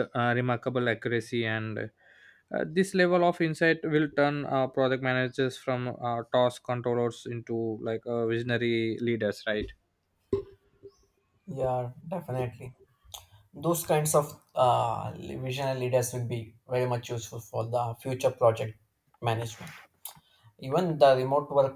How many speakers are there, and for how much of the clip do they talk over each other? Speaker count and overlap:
two, no overlap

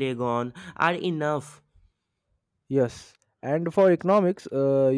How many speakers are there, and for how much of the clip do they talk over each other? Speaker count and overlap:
two, no overlap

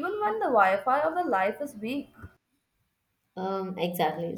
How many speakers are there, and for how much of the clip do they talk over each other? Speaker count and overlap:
two, no overlap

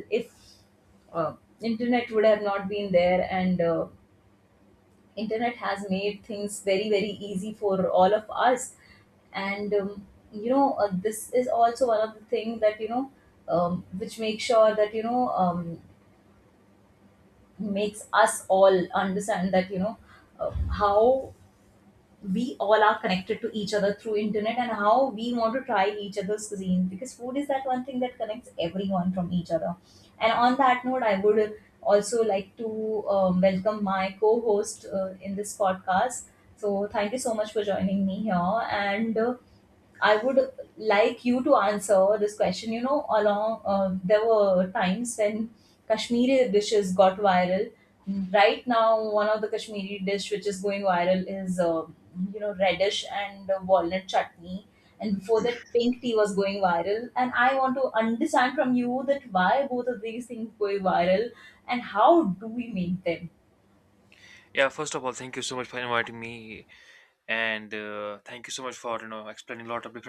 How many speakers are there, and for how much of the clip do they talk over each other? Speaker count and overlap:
two, no overlap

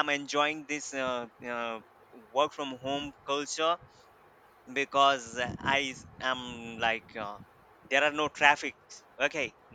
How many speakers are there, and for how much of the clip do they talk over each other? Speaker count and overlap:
one, no overlap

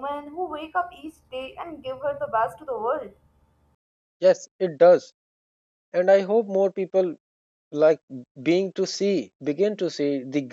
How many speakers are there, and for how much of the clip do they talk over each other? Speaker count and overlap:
two, no overlap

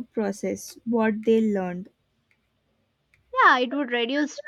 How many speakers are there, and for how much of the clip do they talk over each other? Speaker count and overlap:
two, no overlap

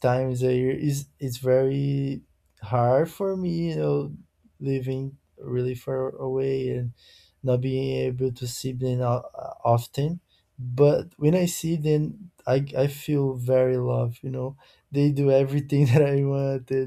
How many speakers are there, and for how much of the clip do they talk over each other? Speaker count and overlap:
one, no overlap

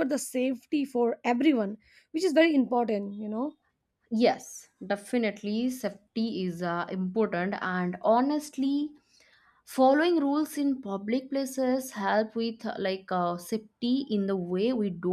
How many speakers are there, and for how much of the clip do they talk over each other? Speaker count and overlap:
two, no overlap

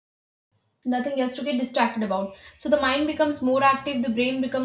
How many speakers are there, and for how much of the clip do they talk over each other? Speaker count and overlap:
one, no overlap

